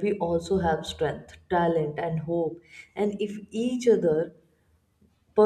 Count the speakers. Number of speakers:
1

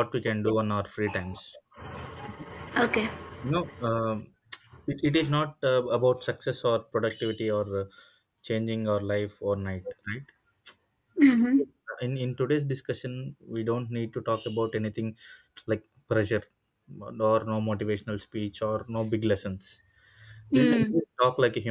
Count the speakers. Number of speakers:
2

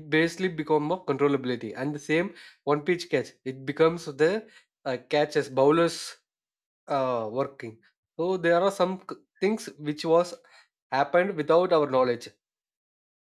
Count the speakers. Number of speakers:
1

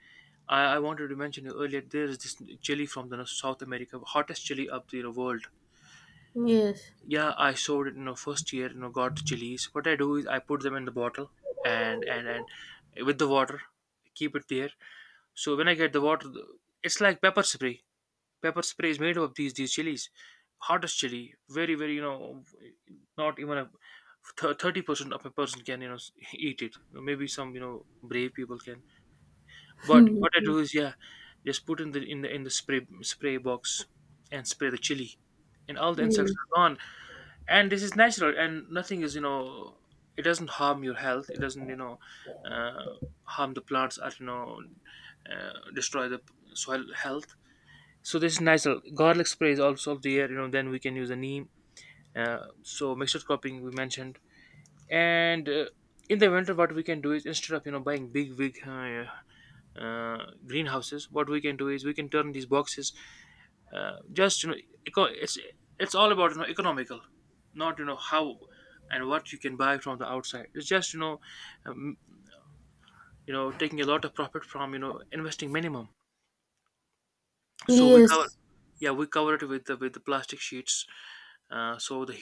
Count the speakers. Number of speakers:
2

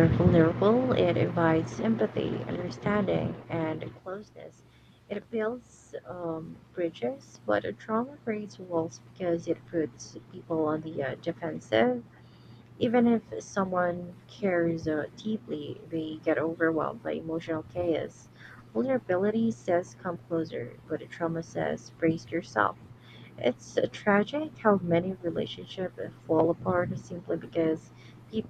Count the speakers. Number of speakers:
1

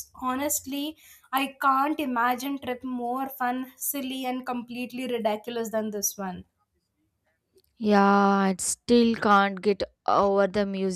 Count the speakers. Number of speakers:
2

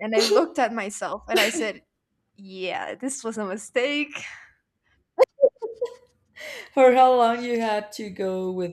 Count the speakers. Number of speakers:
2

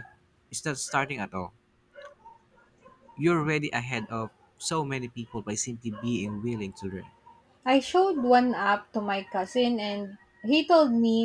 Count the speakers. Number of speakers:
2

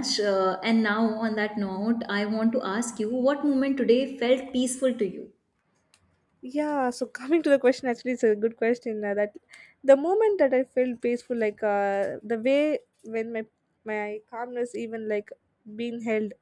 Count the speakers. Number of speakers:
2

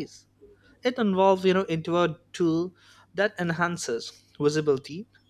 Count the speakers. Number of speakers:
1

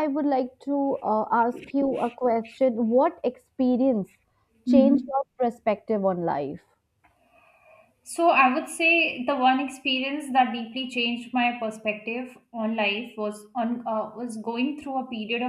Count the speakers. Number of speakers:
2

